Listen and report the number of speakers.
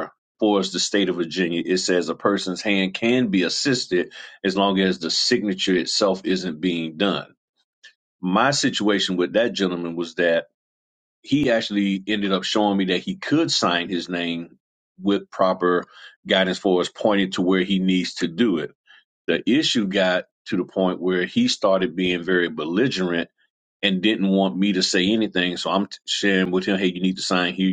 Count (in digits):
1